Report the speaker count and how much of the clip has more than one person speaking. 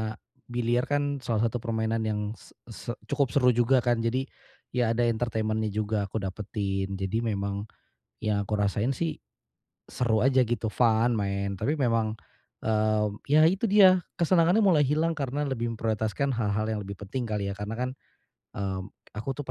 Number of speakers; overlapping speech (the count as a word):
one, no overlap